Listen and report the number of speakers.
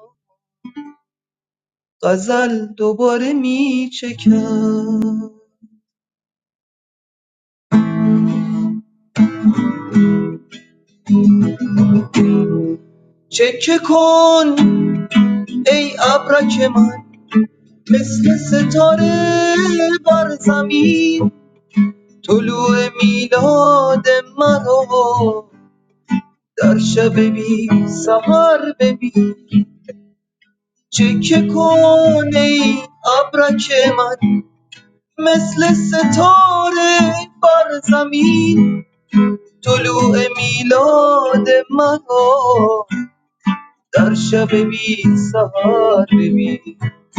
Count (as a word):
one